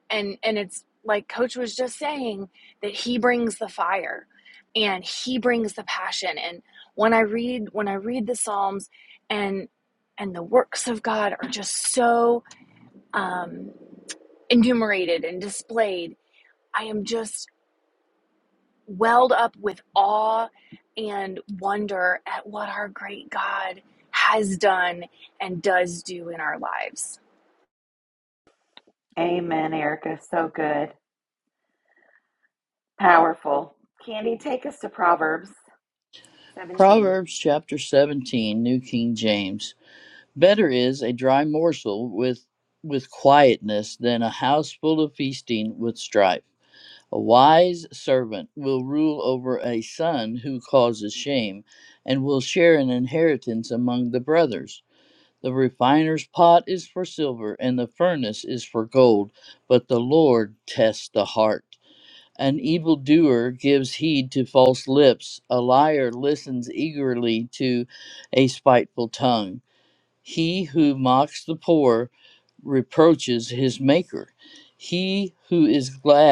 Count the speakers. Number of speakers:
three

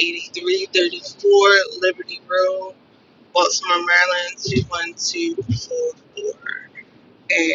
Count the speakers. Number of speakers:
one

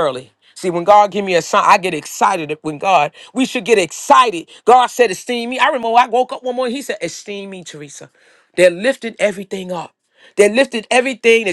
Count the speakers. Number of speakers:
one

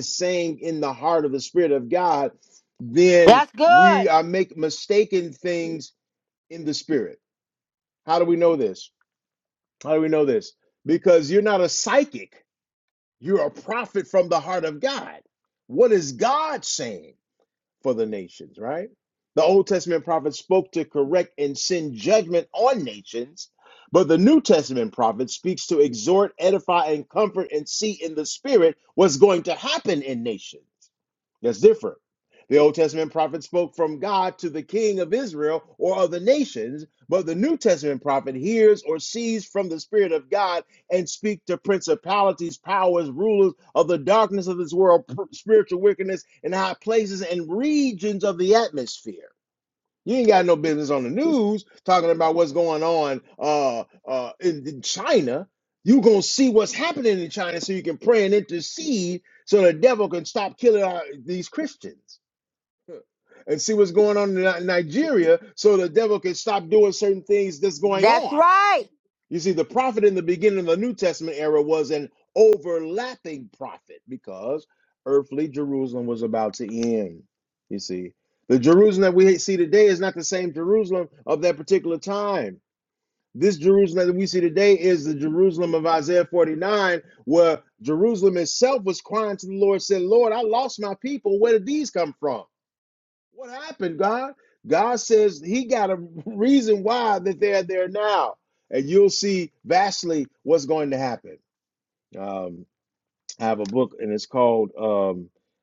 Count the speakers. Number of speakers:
two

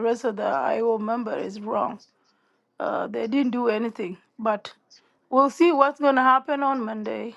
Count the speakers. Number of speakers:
one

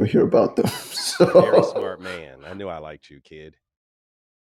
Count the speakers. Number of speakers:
two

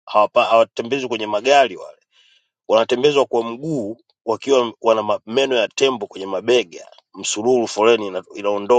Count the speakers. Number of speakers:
one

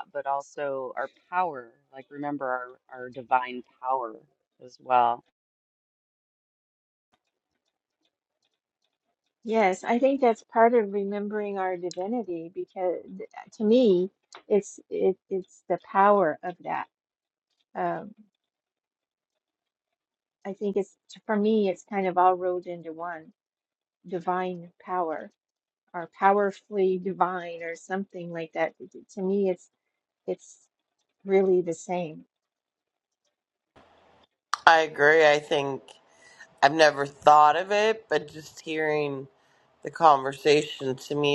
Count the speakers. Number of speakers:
three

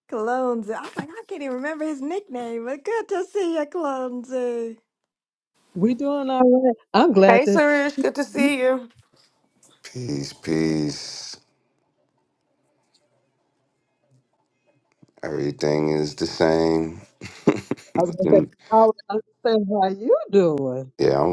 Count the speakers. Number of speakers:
four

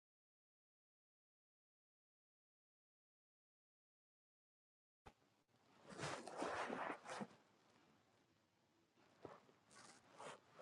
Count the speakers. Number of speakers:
zero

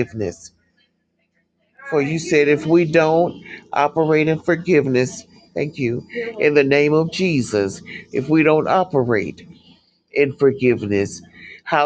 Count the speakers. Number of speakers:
one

